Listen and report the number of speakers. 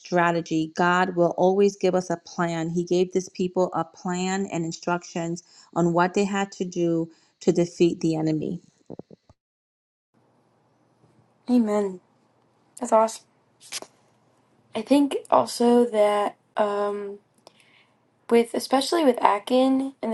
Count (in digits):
2